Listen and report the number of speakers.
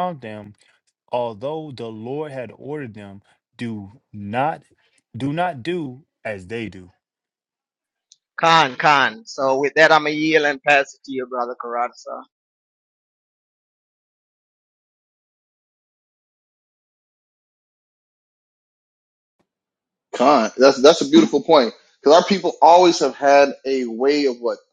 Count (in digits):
3